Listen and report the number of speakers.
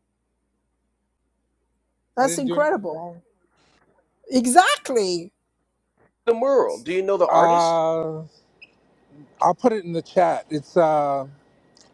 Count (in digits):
3